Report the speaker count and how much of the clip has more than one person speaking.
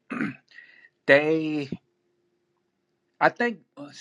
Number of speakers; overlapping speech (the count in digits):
1, no overlap